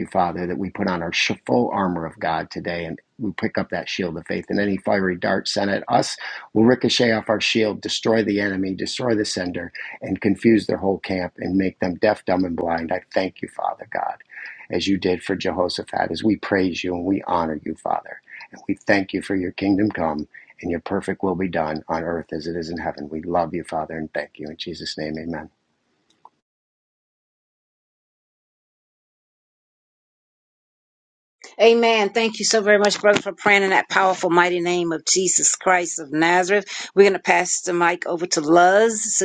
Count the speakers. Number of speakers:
two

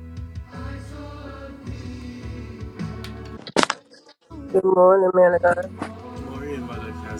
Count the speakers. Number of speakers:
two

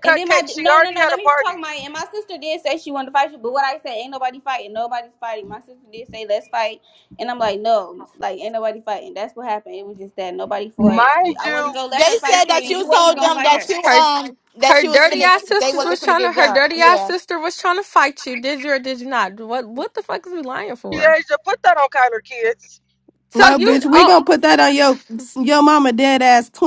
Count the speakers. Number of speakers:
five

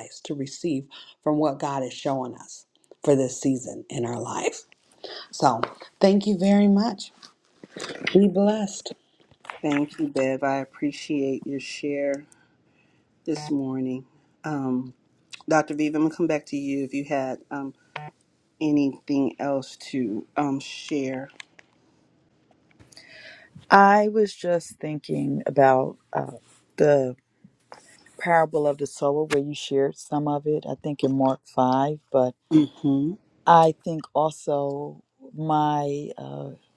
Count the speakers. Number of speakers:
three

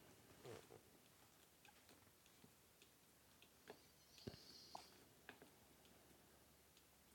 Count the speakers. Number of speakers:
zero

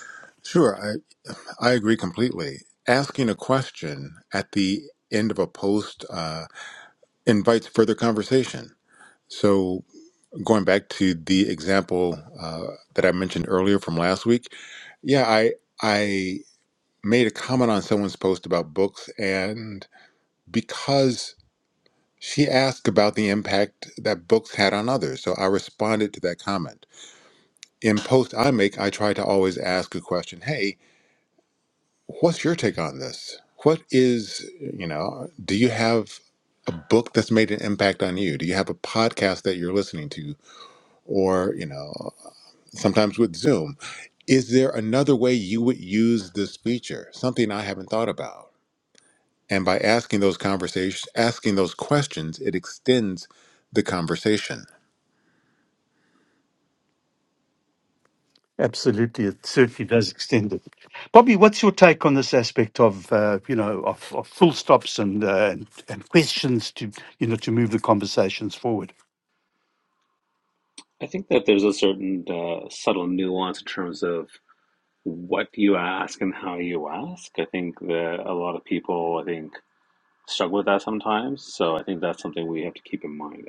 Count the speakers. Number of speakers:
three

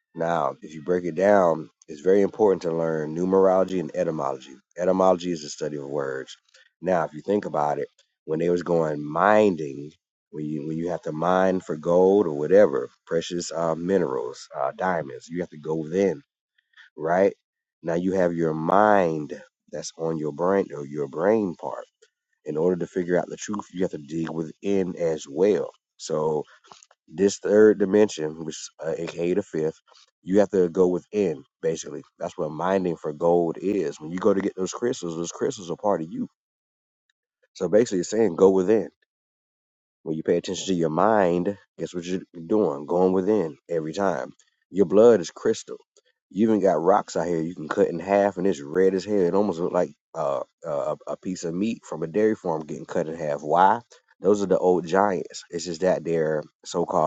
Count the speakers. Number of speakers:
one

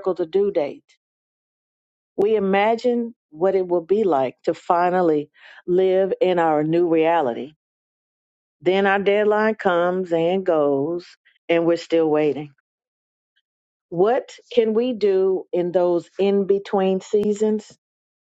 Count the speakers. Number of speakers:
one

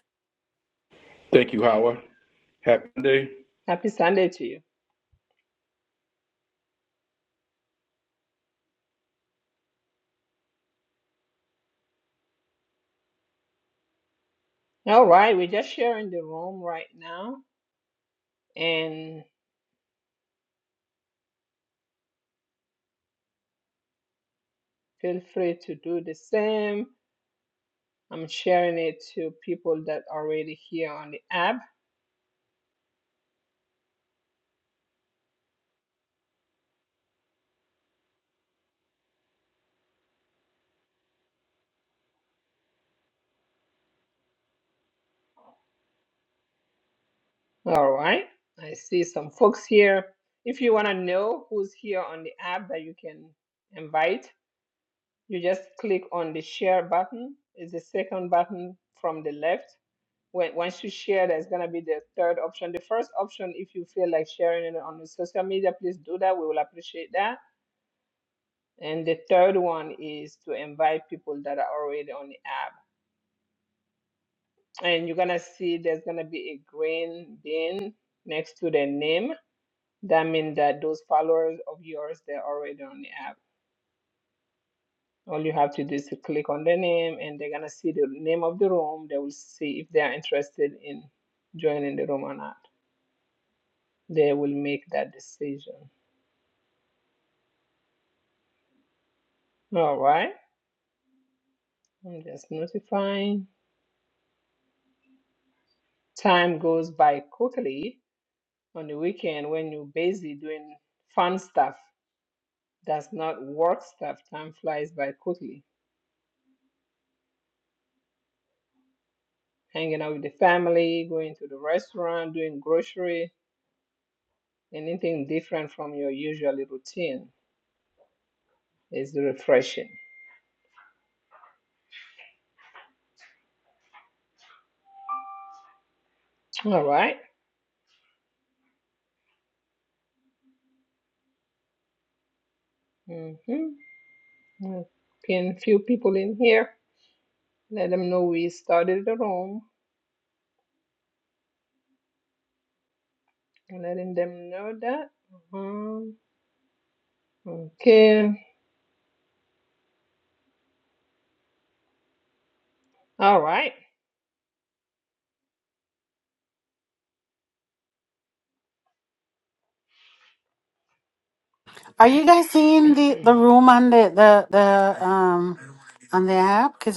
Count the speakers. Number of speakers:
three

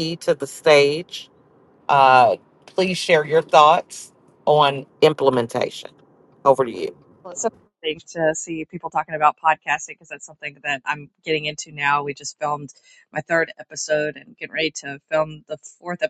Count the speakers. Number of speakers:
two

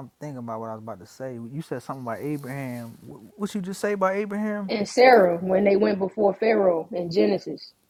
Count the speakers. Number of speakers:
two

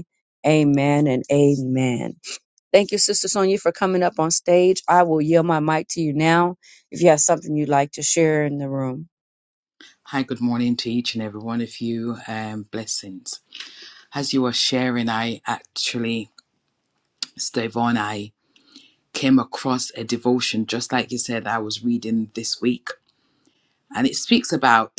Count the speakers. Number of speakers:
two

